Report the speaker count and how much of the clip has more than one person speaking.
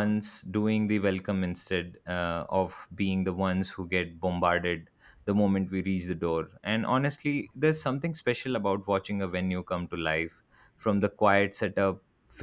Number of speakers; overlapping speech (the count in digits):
1, no overlap